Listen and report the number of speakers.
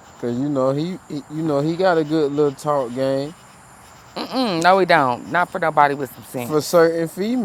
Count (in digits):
2